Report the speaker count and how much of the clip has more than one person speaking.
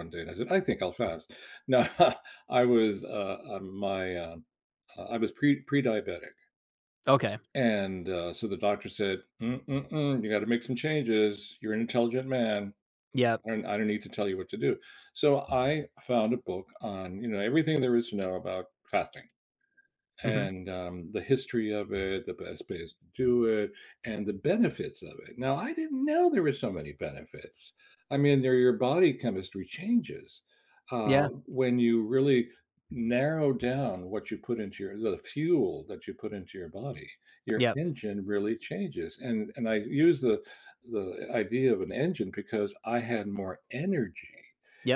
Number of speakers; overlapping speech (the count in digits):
2, about 2%